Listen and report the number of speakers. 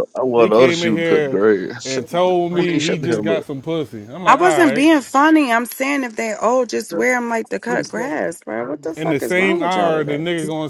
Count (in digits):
3